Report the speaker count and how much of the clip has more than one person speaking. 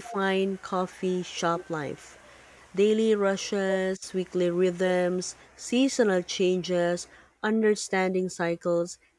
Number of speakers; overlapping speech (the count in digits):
1, no overlap